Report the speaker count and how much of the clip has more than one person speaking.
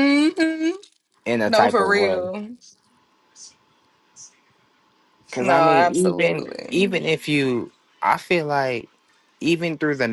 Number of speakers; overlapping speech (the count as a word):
two, about 20%